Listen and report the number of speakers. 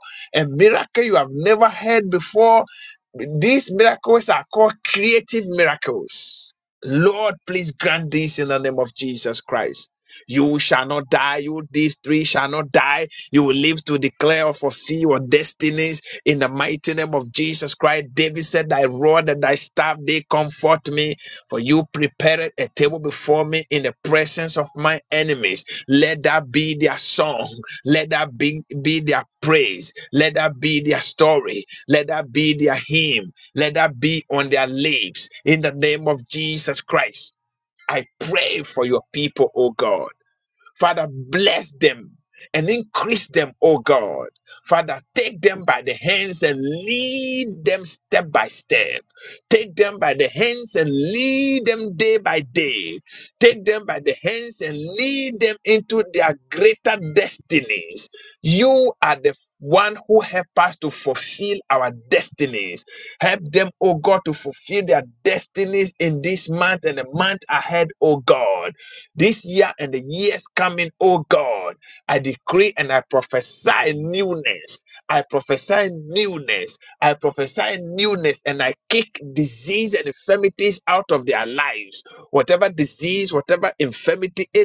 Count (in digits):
1